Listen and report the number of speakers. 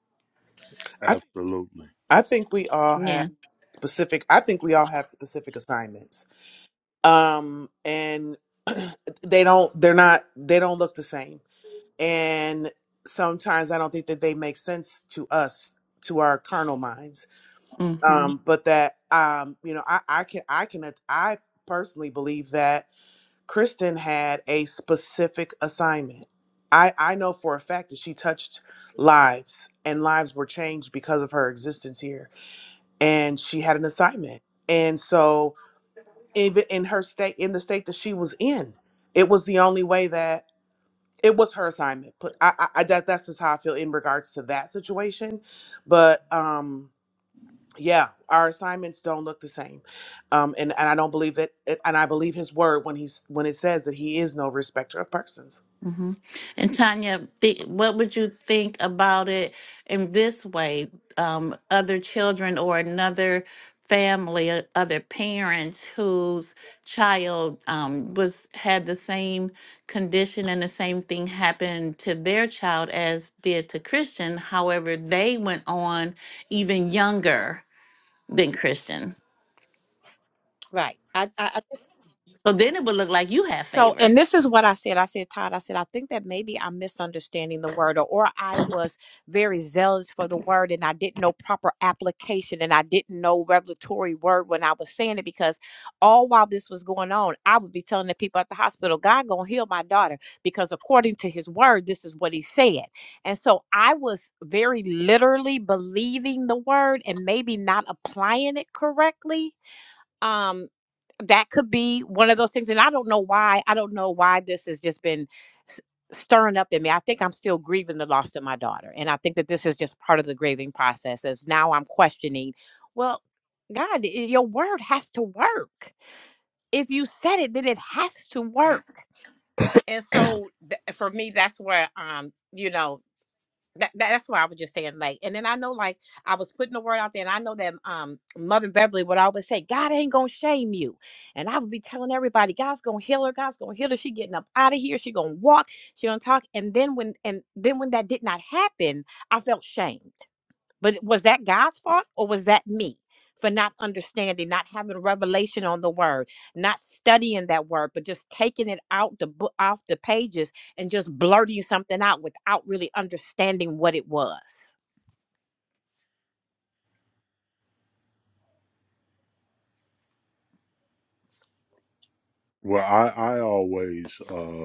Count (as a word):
four